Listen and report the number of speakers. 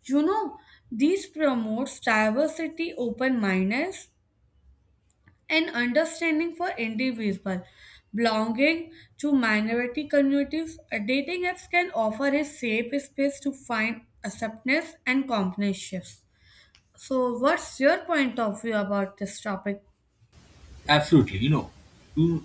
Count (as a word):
two